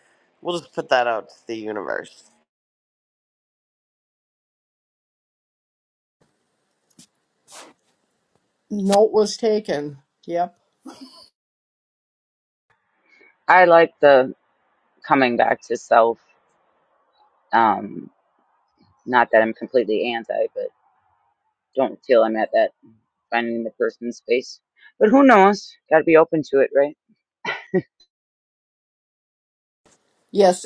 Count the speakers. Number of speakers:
three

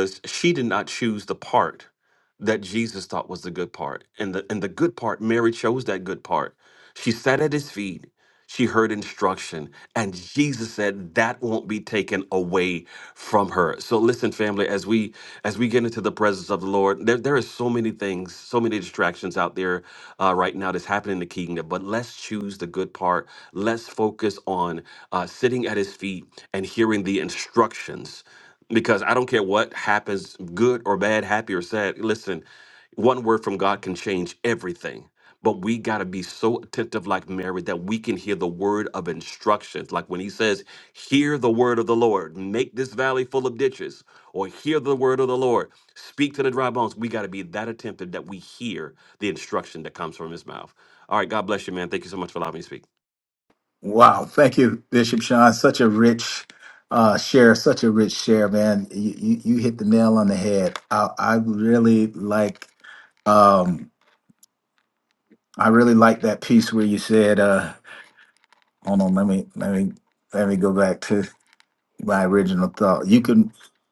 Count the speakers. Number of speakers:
two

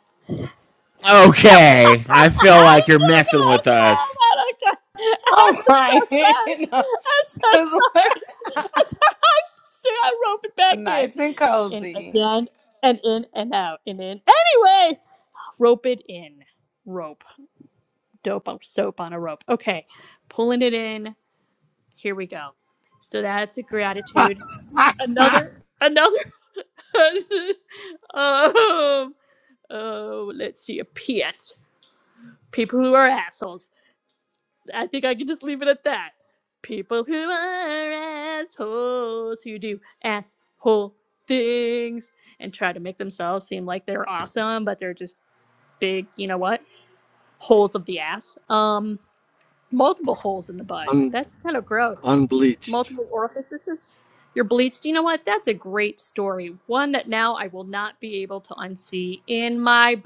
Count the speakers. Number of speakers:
four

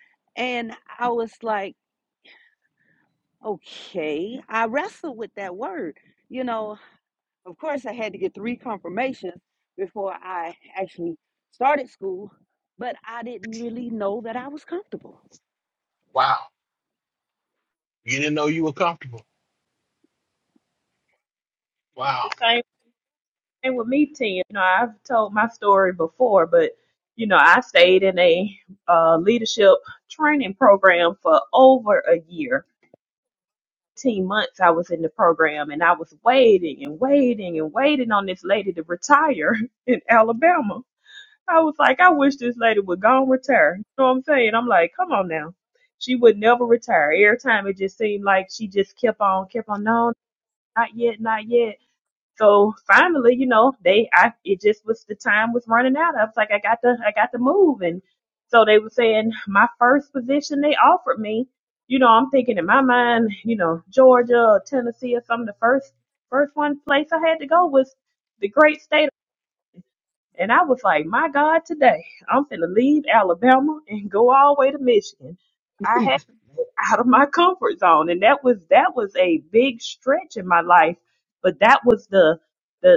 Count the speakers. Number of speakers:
three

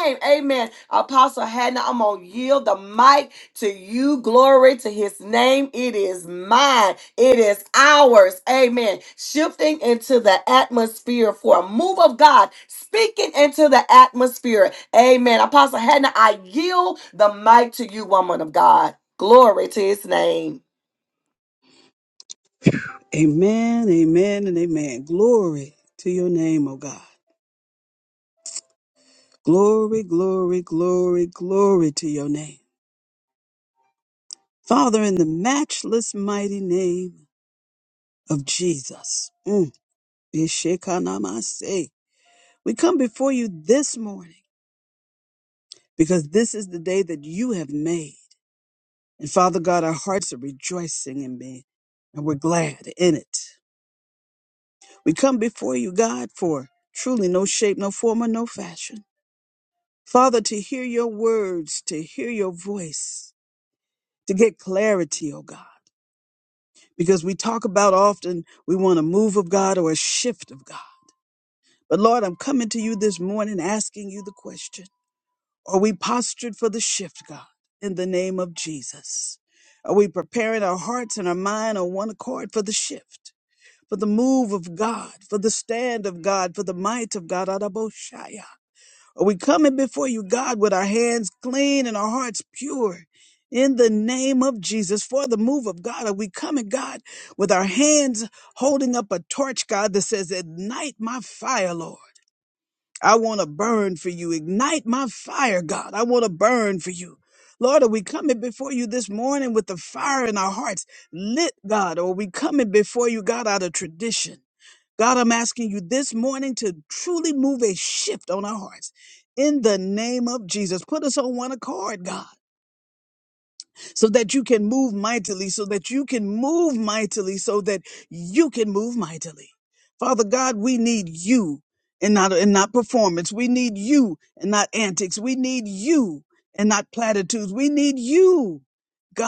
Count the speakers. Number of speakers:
two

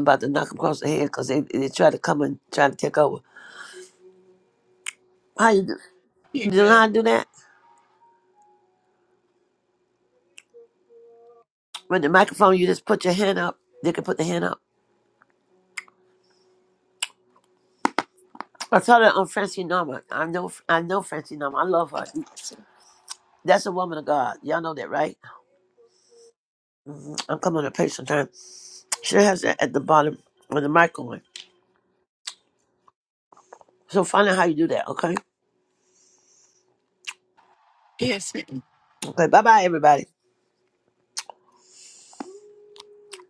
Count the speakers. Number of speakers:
two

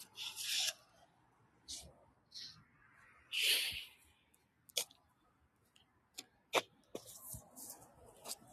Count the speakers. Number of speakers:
zero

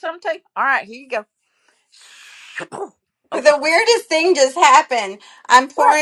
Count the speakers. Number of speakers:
two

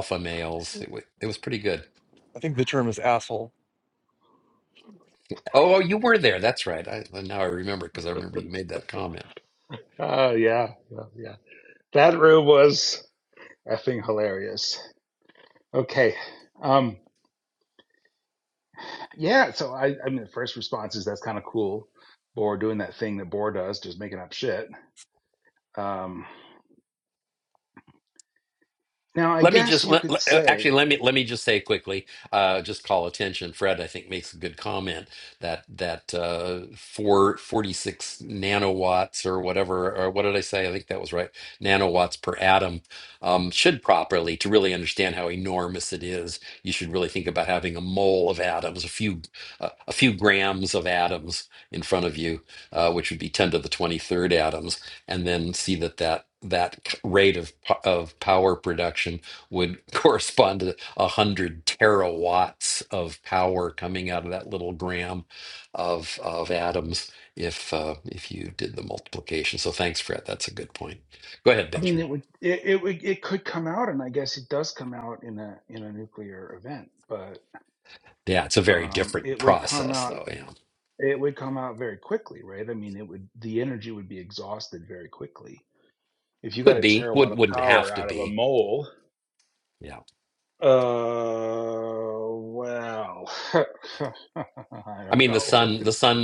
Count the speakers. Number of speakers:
three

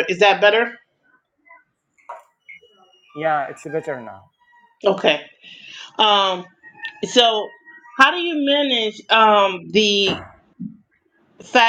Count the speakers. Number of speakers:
two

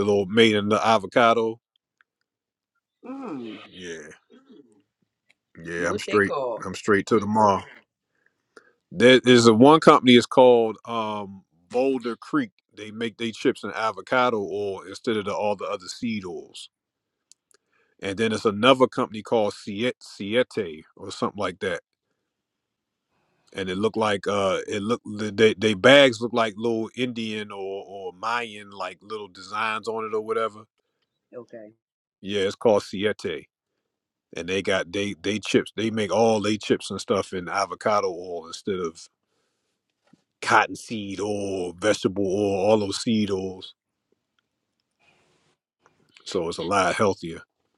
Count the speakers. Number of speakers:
two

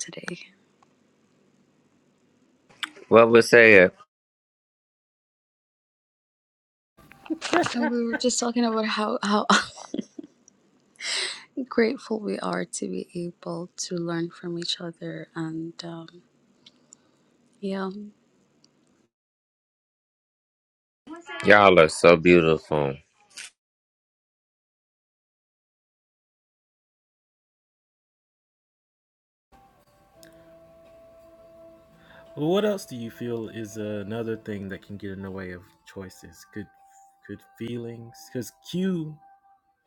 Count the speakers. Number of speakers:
three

